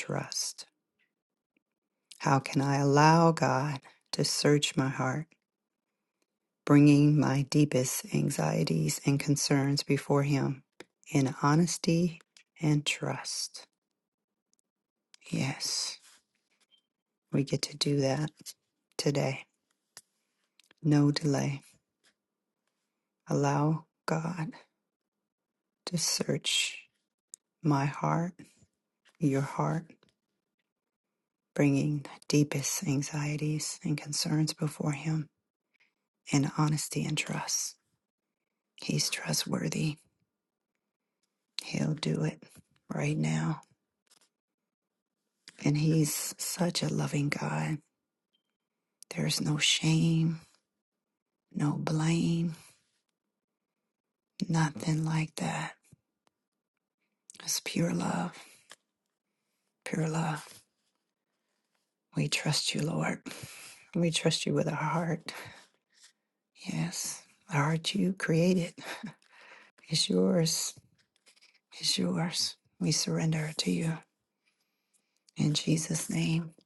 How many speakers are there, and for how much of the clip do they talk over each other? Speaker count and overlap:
1, no overlap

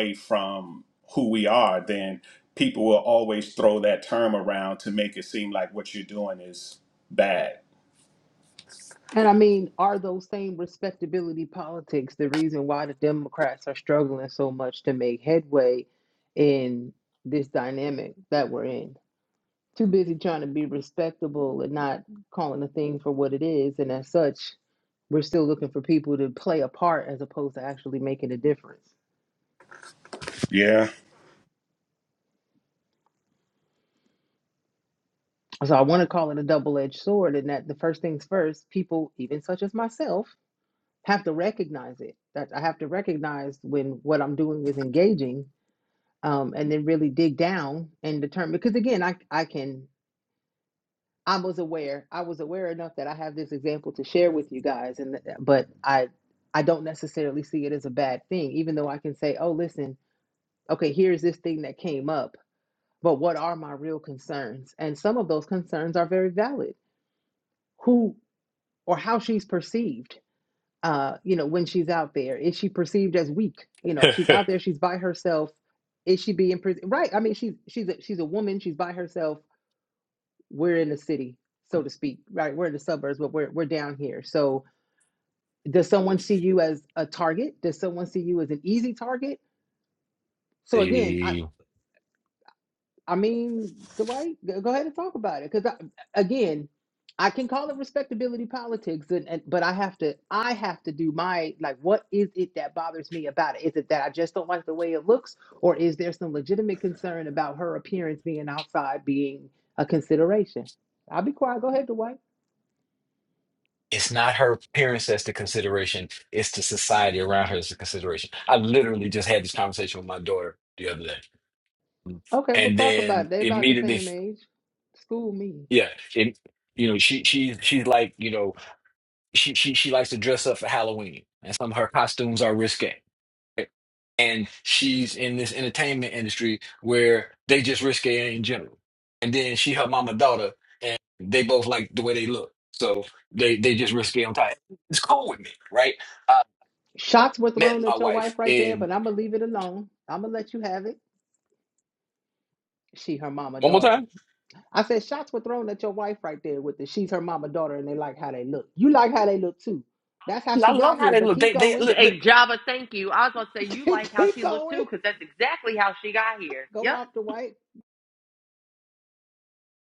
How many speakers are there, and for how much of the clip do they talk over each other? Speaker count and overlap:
4, about 4%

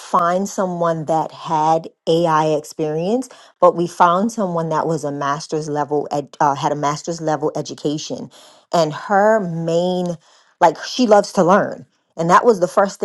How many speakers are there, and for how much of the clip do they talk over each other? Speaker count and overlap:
1, no overlap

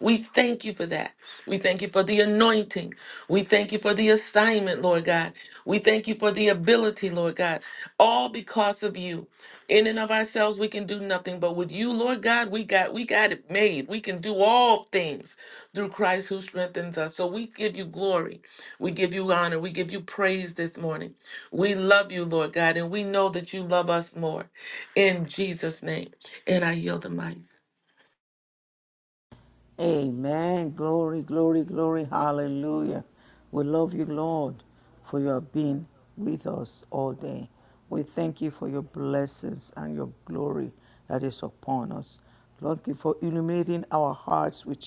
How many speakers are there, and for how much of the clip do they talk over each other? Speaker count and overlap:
2, no overlap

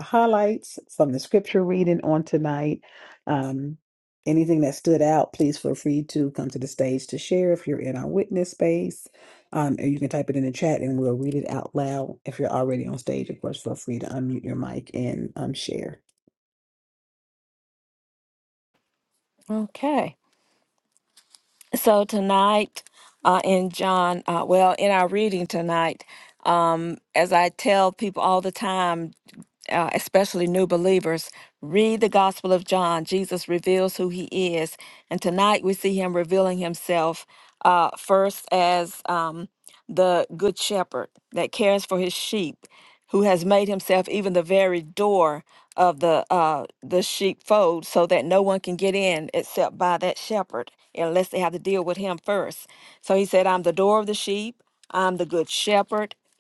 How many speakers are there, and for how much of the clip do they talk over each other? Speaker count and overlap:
2, no overlap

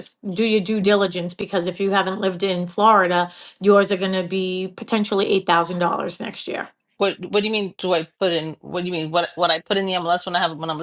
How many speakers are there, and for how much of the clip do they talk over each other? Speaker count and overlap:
2, no overlap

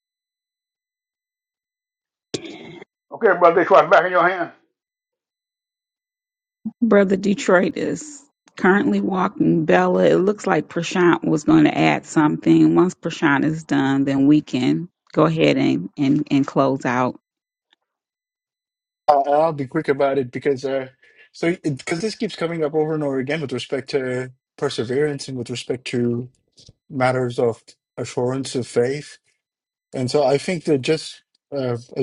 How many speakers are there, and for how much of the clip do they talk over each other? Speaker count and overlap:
3, no overlap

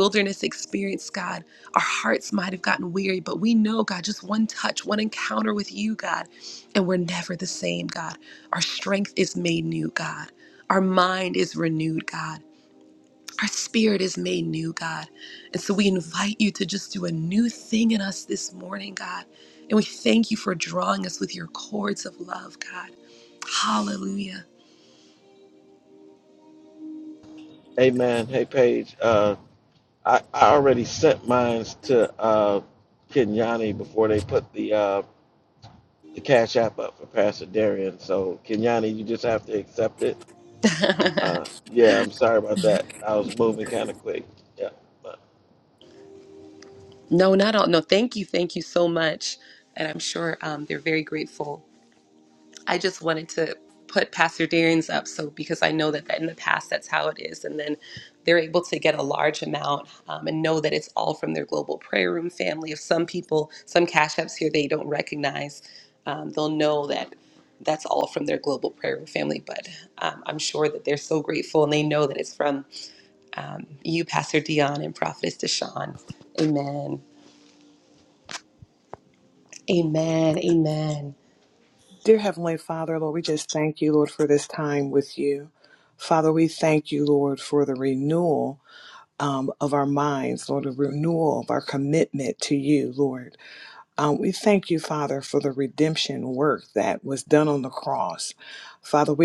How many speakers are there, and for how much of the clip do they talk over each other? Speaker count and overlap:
3, no overlap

